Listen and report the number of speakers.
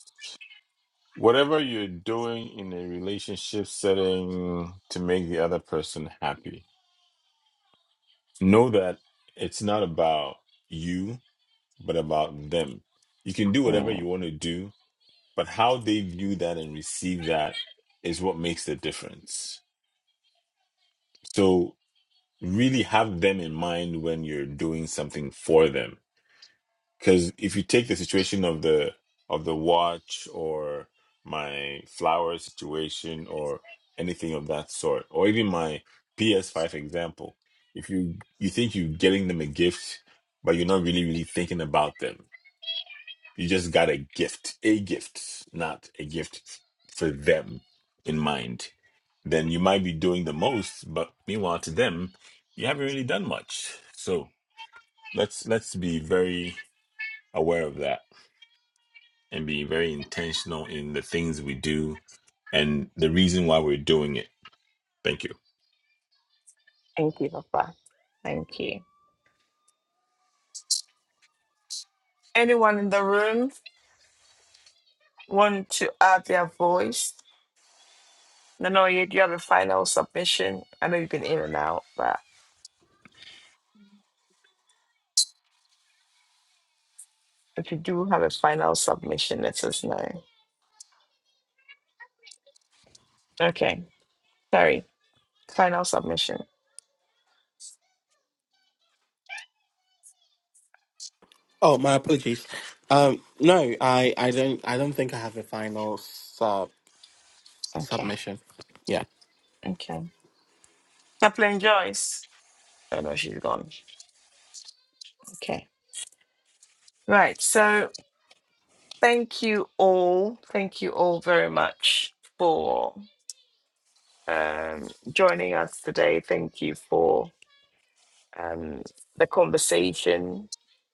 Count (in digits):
3